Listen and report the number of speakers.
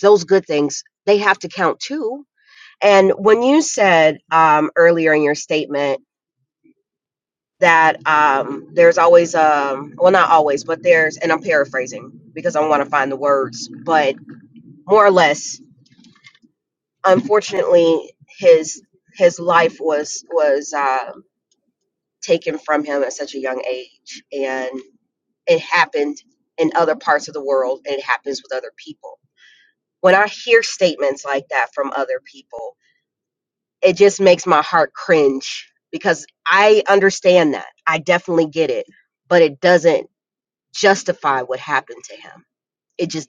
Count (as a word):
one